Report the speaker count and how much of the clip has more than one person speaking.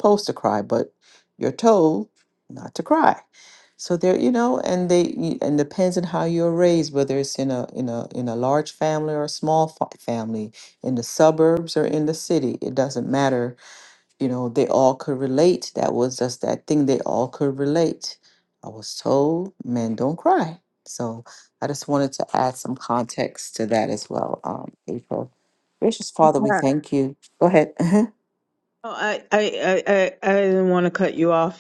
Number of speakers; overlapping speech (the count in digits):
2, about 1%